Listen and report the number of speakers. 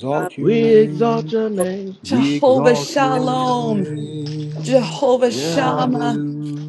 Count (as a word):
three